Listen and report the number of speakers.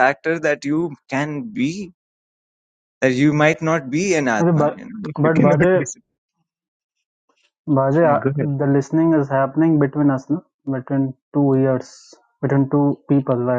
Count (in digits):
2